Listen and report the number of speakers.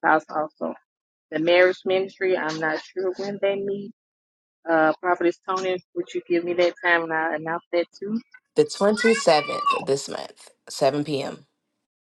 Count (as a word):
two